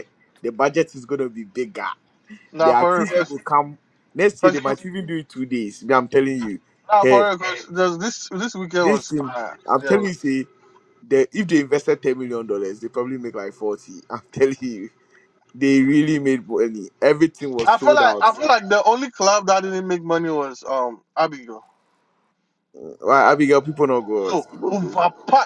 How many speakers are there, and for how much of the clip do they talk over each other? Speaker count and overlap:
2, about 13%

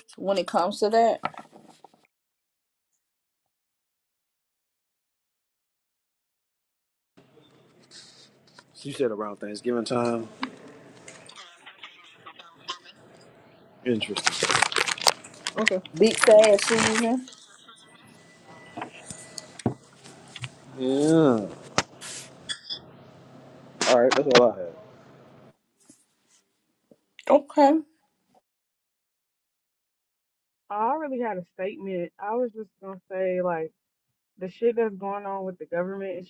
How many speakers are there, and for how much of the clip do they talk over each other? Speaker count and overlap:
3, no overlap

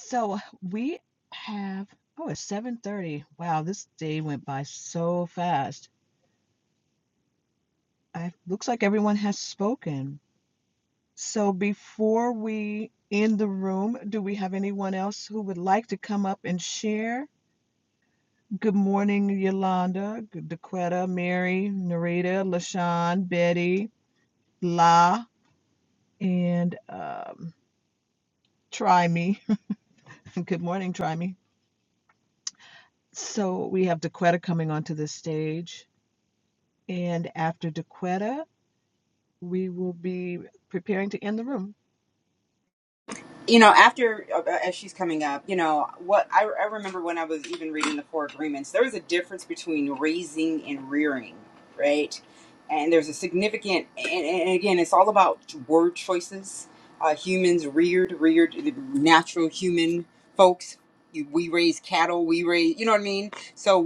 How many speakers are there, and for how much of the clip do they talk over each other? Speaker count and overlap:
2, no overlap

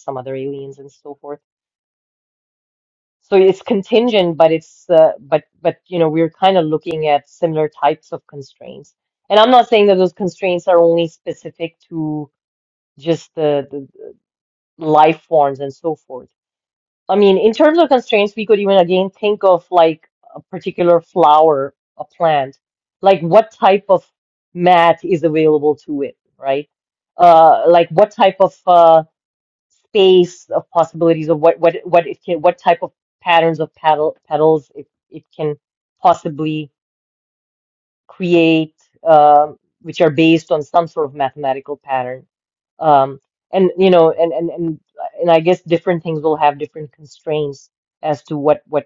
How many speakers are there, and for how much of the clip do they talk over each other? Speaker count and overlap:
1, no overlap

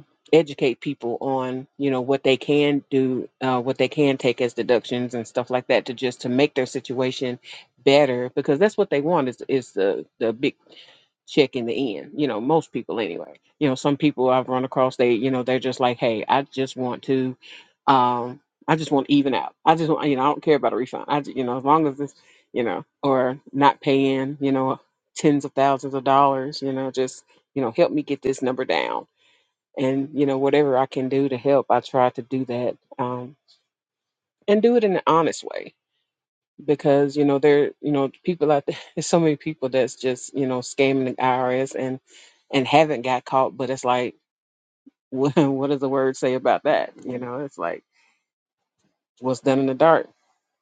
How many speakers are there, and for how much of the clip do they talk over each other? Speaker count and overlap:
1, no overlap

